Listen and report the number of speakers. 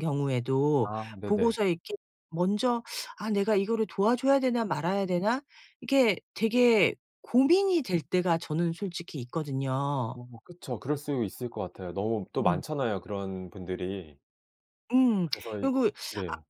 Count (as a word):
two